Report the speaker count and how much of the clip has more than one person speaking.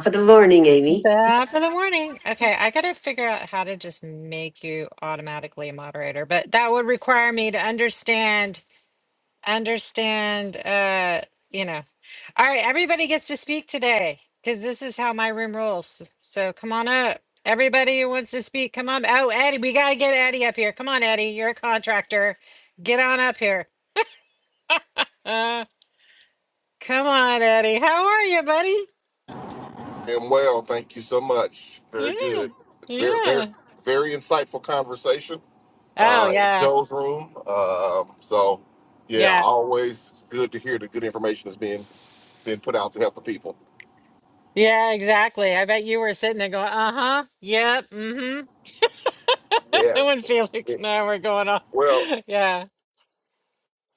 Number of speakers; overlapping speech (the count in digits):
3, about 4%